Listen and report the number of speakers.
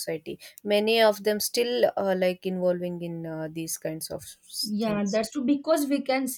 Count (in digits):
2